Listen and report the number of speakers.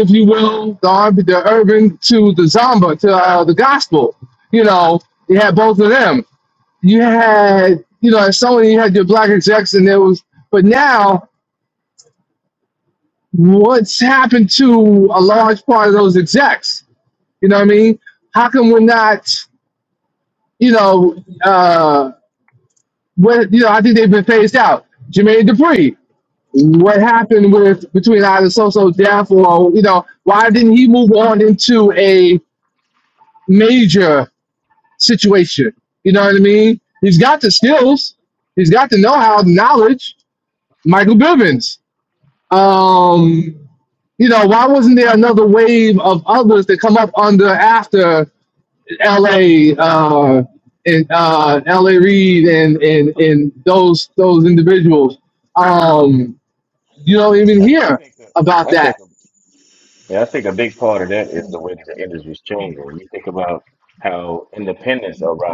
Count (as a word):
two